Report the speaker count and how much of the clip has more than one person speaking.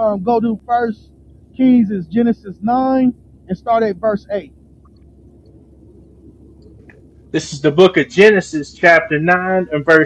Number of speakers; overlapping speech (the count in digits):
2, no overlap